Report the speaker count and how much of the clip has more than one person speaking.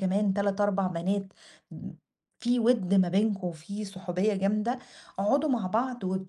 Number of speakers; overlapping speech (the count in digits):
1, no overlap